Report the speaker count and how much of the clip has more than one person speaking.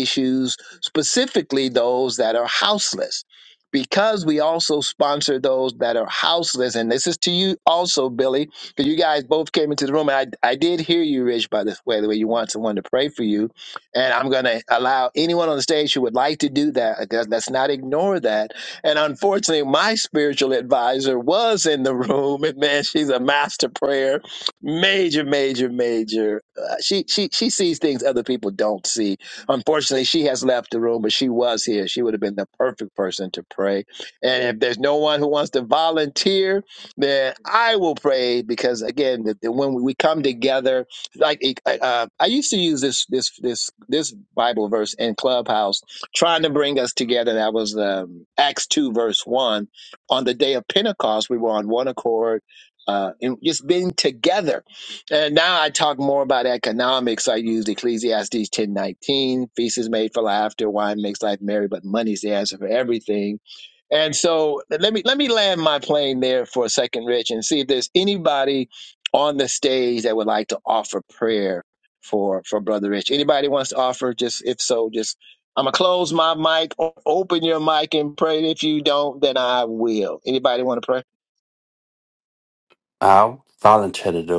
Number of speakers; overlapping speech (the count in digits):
2, no overlap